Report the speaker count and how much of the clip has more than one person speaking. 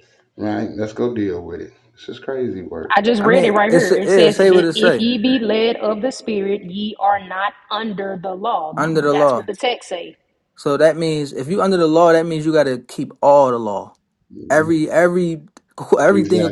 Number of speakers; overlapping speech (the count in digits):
3, about 19%